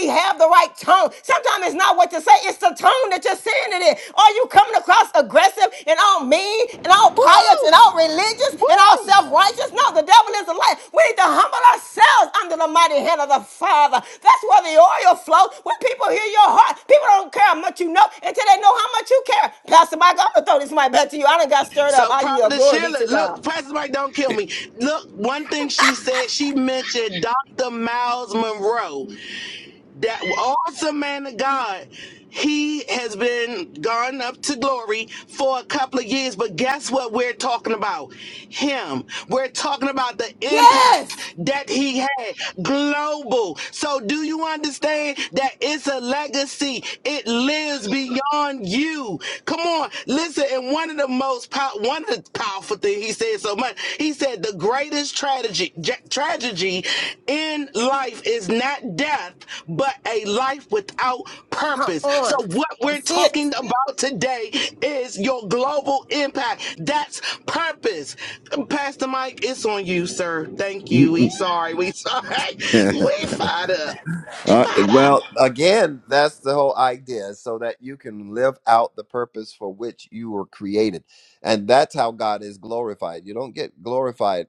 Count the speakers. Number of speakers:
3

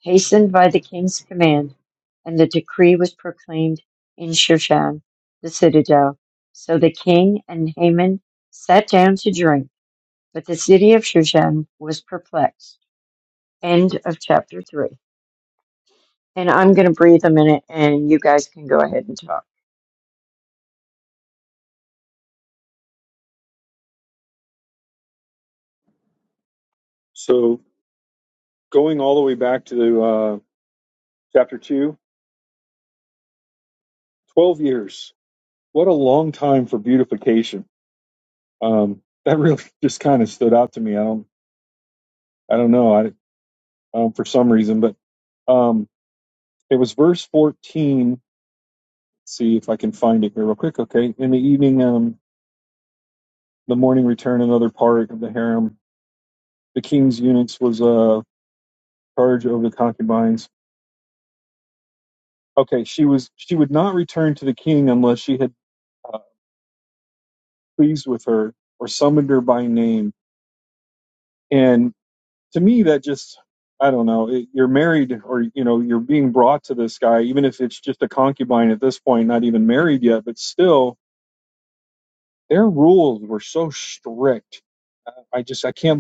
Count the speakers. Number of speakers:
2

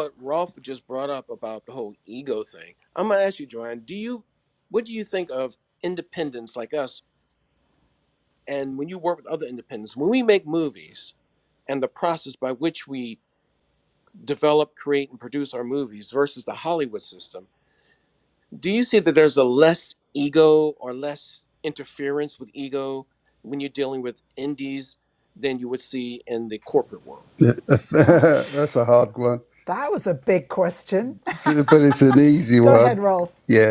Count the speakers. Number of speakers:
3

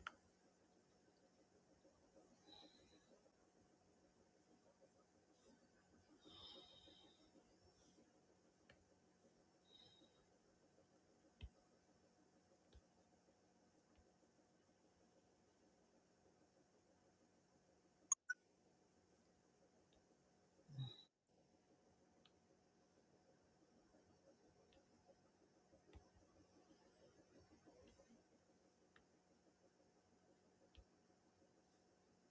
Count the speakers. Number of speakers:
0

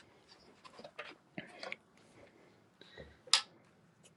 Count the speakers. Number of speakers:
0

